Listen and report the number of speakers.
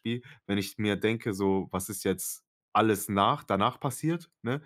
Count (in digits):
1